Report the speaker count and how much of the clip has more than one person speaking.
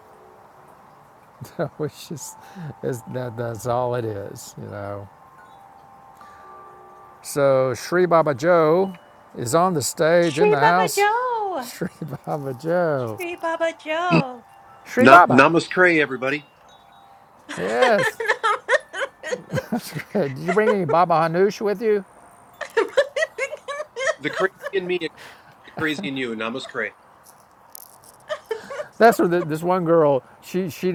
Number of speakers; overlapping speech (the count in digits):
3, about 4%